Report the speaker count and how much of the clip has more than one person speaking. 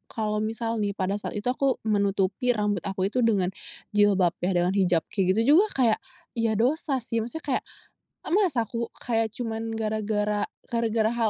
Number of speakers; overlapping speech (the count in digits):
1, no overlap